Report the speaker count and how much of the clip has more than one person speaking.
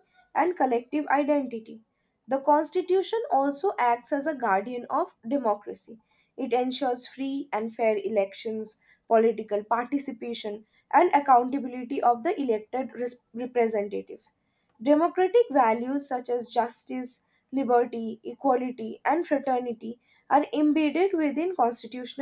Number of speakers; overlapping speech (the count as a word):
one, no overlap